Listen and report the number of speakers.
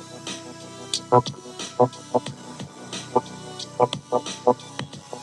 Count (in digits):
0